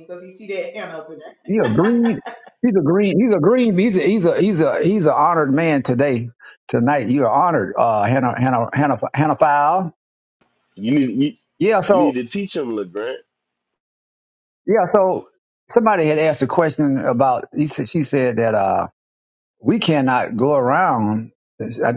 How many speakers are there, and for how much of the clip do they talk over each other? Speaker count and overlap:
three, about 1%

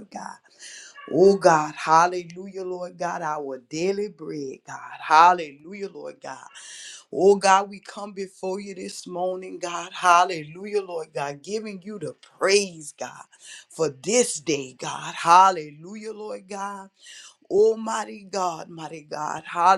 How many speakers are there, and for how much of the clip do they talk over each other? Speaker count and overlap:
one, no overlap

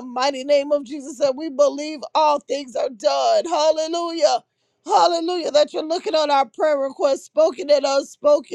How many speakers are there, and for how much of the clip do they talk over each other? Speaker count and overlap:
one, no overlap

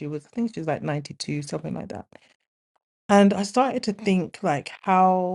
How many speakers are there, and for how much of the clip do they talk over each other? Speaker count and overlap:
one, no overlap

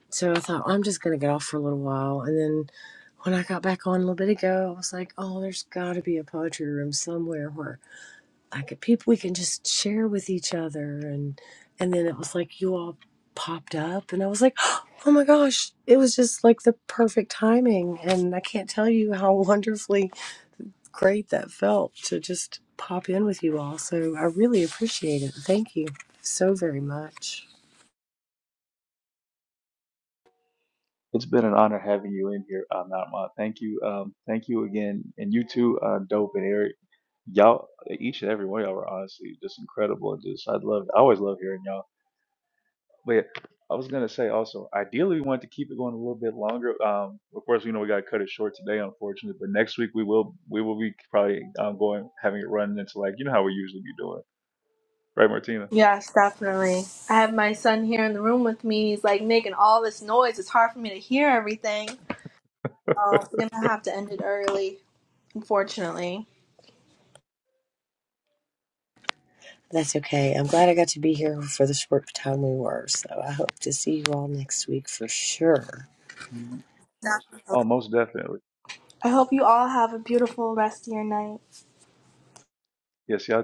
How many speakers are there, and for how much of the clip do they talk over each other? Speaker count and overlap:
three, no overlap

